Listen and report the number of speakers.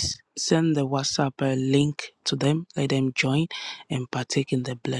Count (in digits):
1